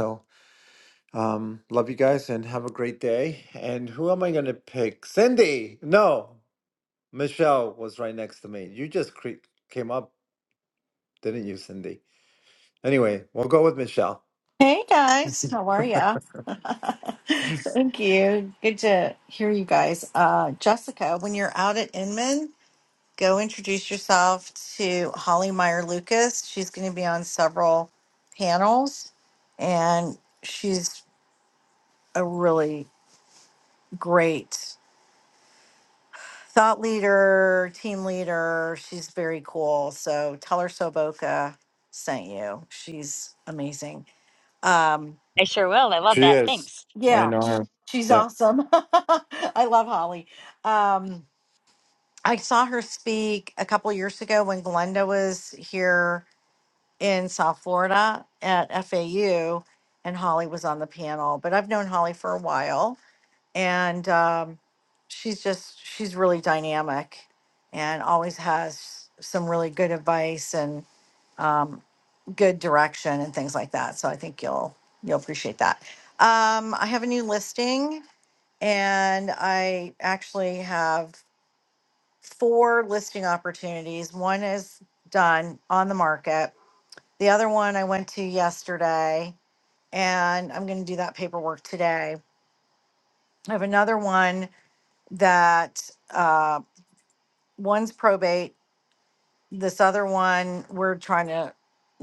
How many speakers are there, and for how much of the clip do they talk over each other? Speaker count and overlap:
3, about 1%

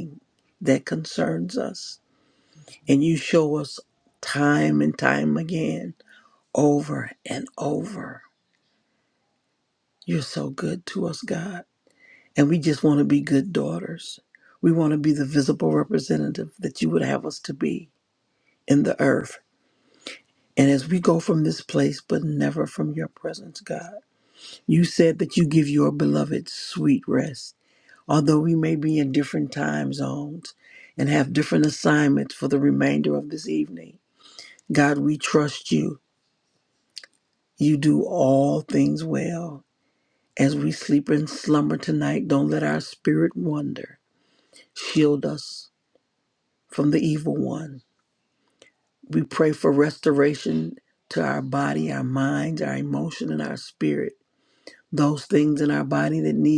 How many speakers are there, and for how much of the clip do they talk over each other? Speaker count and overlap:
1, no overlap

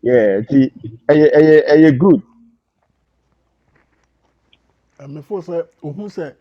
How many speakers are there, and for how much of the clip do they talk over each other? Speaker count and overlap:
2, no overlap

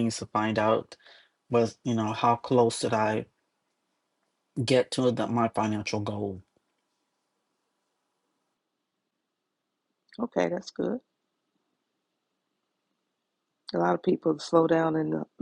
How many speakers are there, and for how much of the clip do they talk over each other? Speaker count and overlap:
2, no overlap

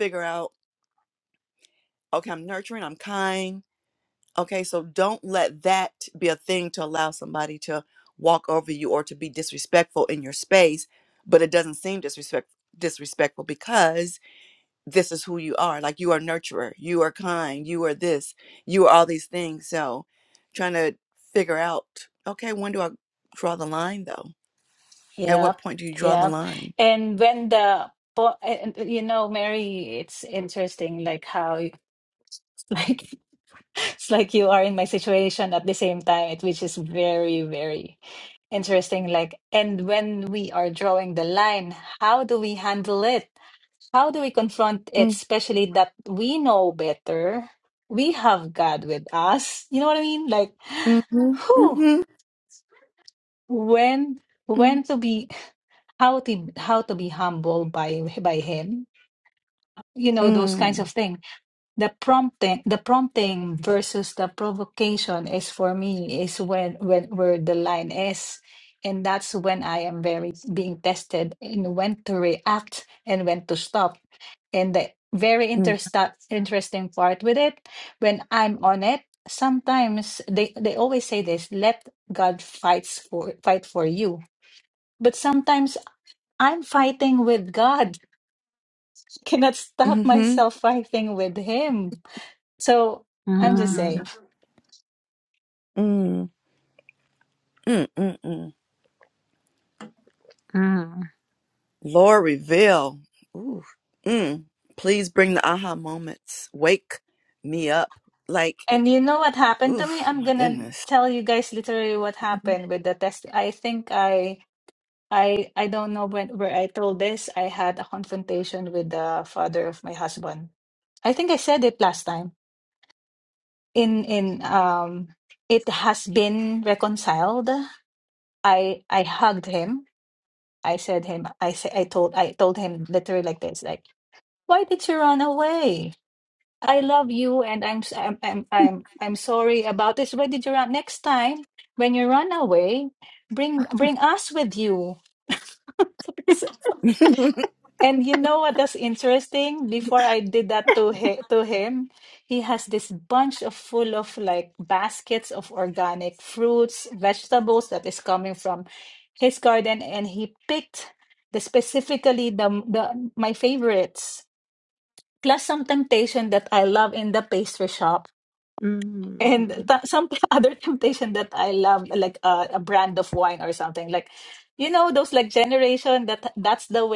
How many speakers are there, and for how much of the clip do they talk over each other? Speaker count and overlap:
3, about 3%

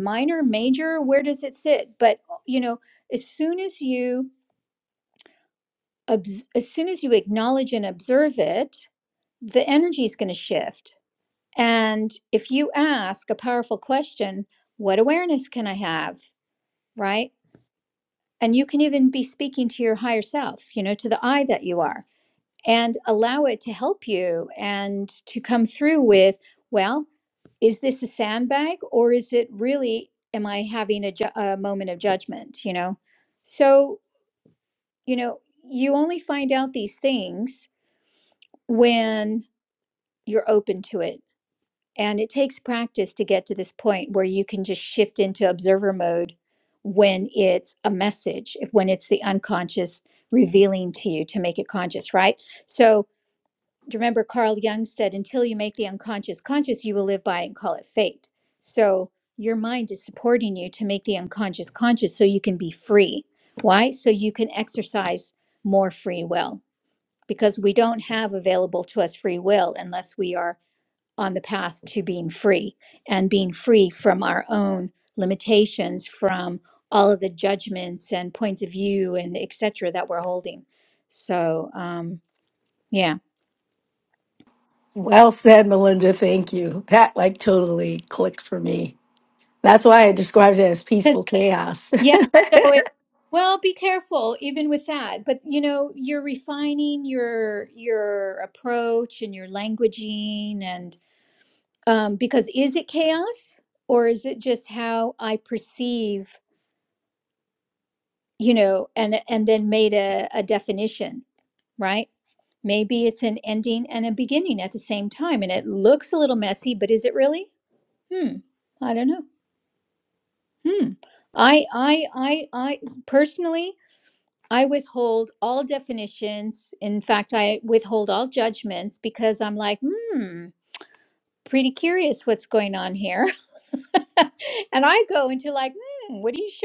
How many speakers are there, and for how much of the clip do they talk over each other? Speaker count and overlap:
2, no overlap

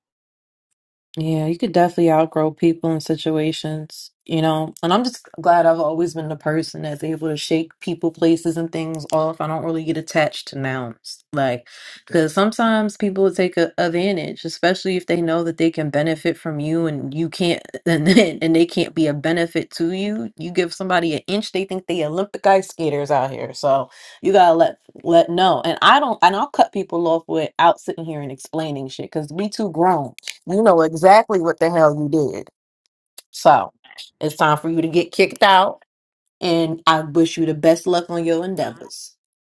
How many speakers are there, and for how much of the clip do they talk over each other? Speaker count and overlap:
1, no overlap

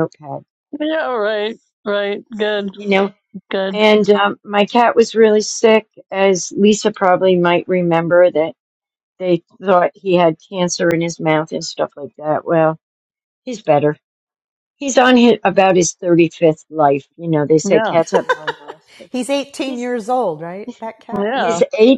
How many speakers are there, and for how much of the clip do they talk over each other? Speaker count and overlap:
3, about 4%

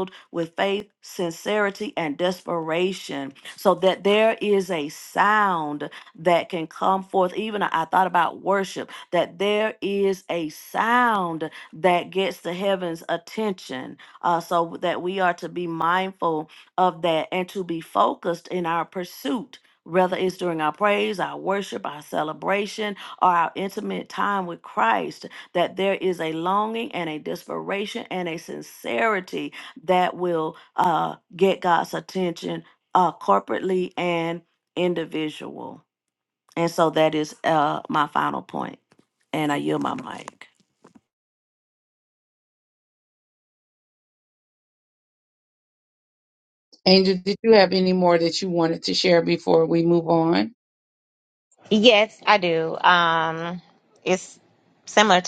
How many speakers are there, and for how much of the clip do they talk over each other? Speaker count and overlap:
3, no overlap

